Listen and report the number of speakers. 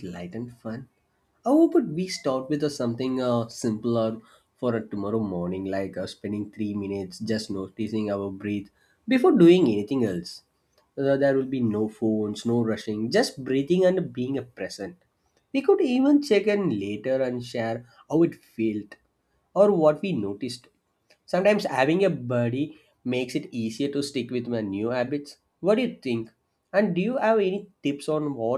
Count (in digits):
1